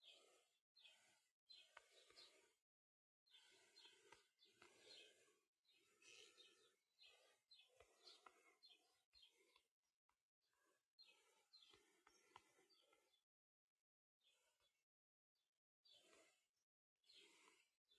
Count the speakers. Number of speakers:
zero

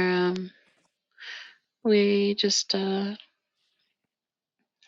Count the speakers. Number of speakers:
one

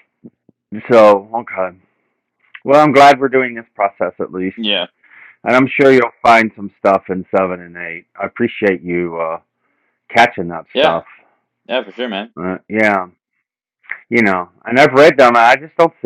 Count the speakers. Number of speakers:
two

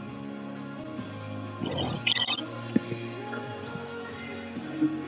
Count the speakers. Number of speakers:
zero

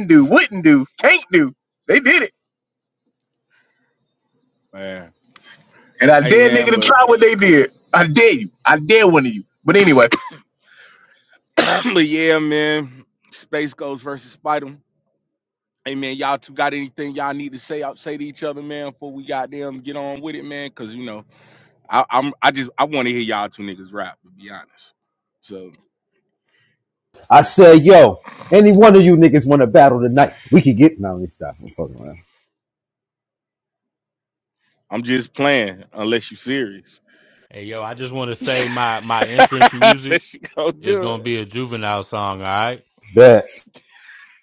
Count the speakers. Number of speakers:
four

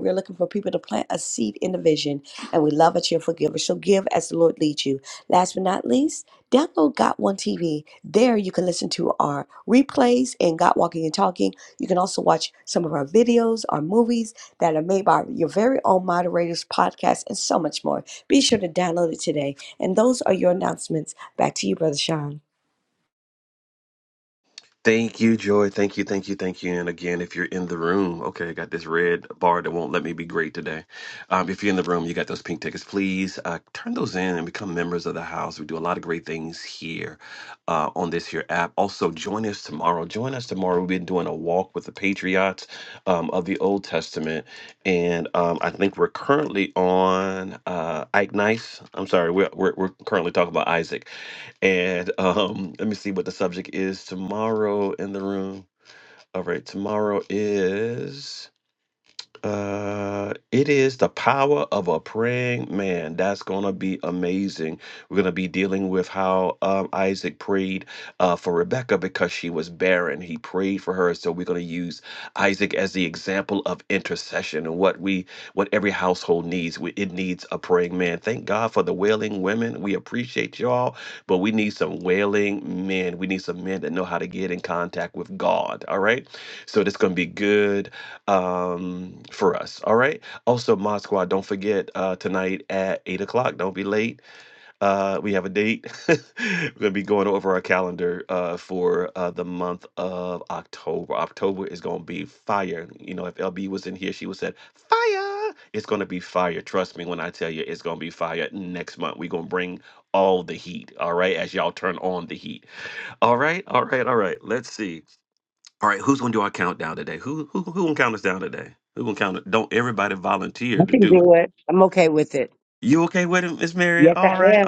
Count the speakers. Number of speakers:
three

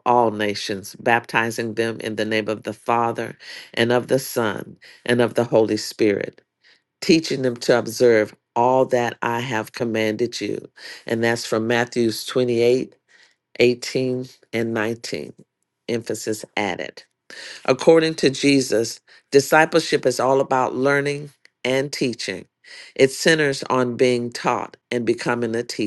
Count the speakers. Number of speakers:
one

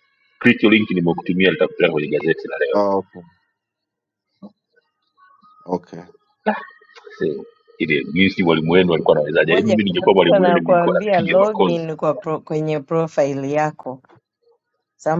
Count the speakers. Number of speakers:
three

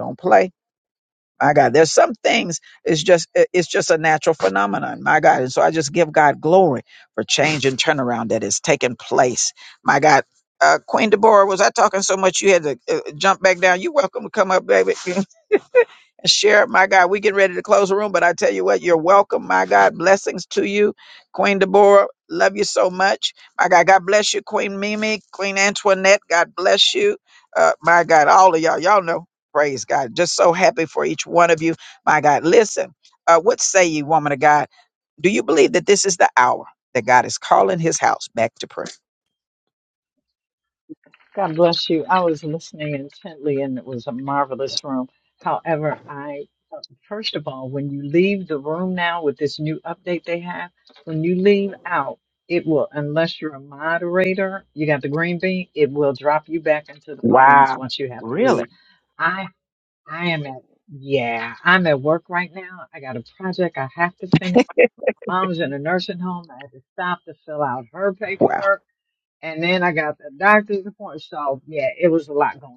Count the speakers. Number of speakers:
two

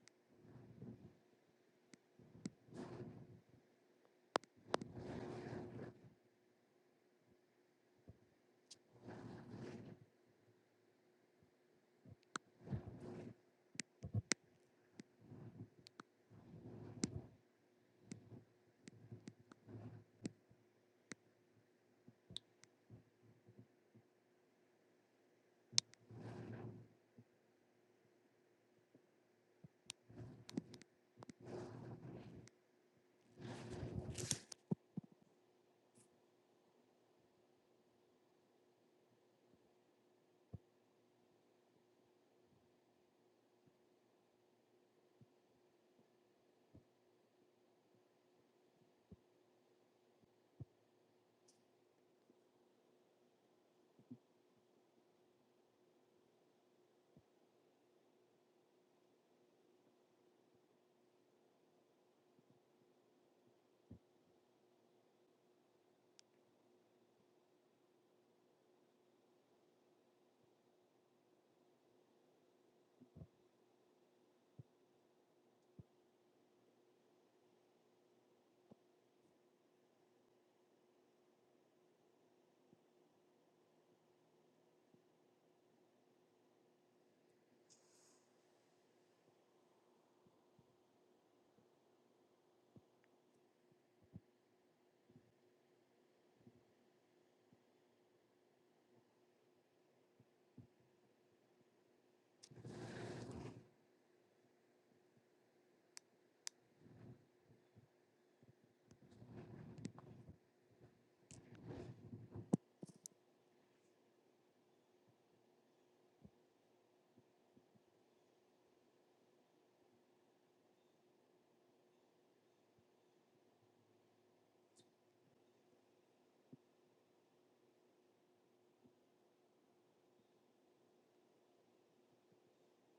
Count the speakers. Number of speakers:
zero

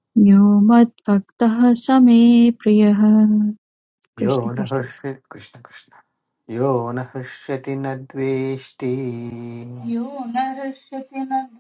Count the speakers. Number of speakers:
three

